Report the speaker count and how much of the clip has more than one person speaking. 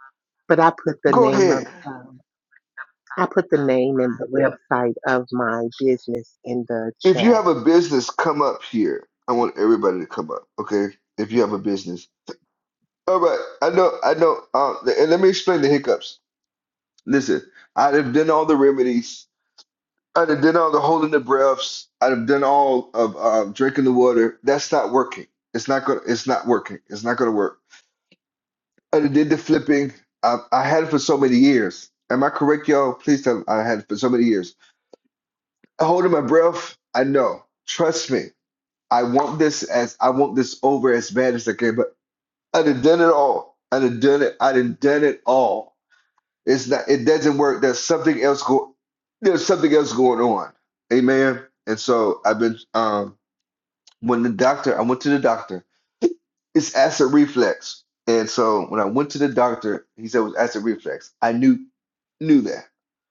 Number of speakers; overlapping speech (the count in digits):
2, about 2%